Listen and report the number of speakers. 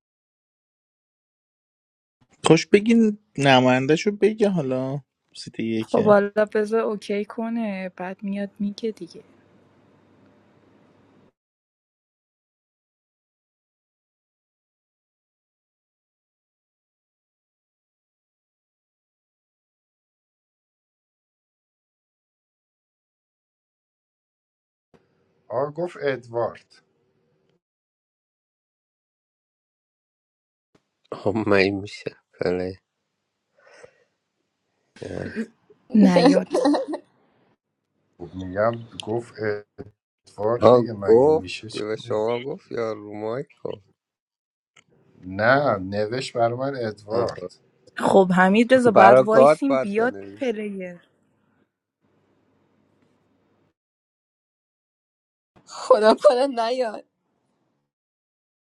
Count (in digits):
5